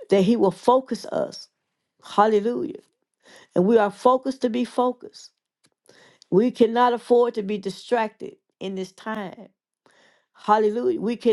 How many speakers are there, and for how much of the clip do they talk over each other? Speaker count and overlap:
one, no overlap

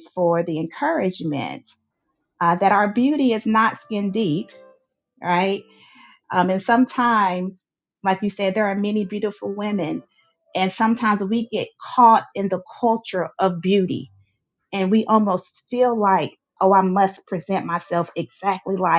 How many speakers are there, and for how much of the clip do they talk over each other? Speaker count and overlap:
one, no overlap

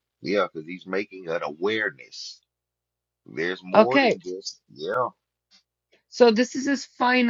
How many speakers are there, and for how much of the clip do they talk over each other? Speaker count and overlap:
two, about 6%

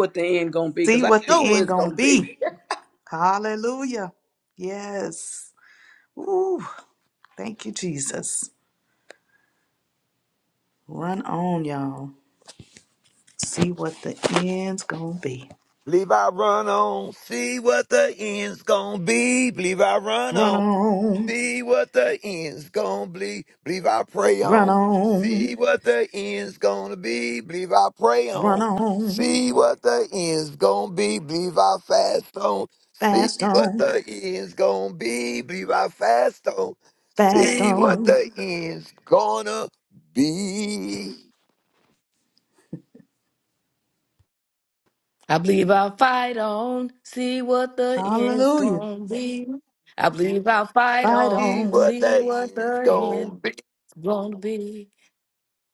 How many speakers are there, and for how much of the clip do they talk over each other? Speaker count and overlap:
four, about 13%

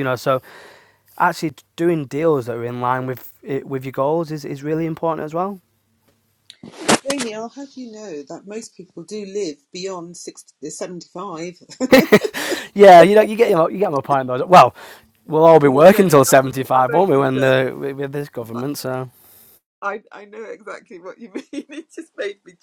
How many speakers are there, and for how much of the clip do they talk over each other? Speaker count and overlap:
two, about 9%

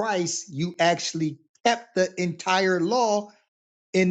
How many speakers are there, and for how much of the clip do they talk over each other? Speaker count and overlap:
one, no overlap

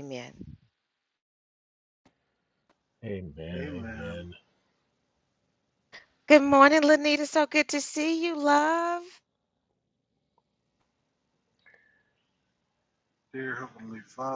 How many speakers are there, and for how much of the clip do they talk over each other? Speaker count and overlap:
three, about 4%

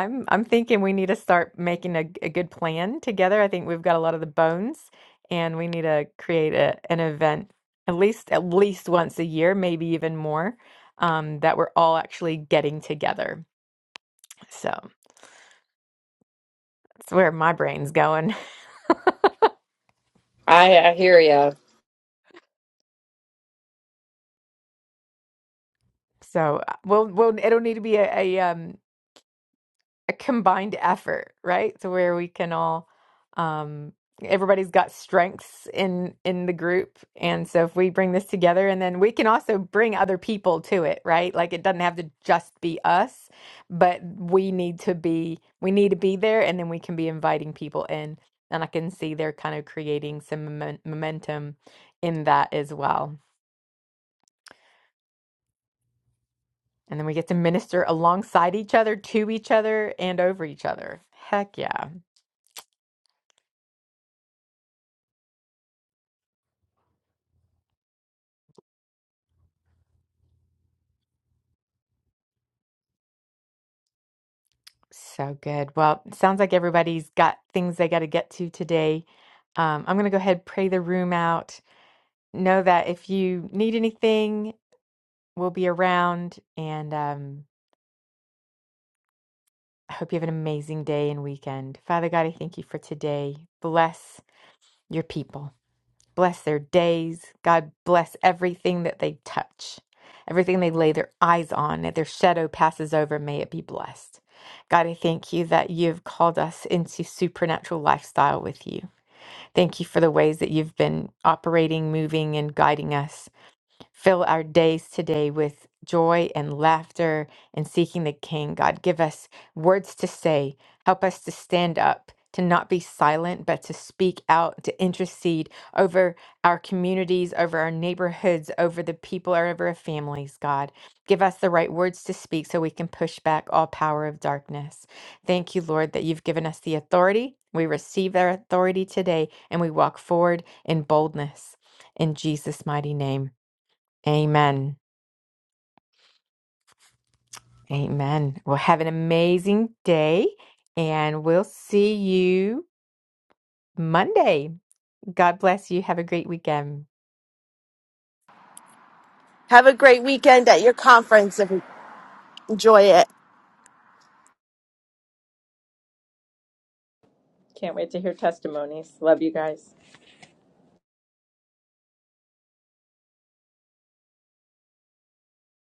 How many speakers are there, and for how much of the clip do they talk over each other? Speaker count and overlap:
four, no overlap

